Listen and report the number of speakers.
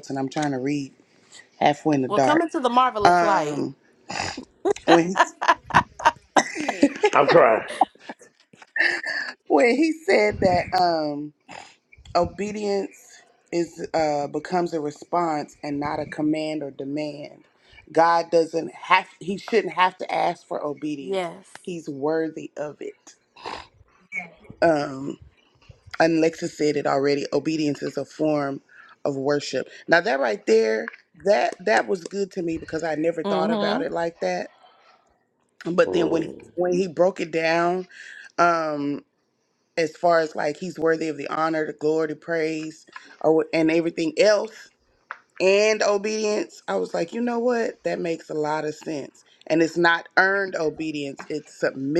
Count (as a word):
three